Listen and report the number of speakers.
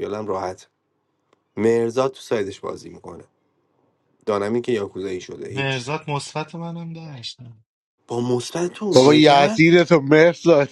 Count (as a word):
three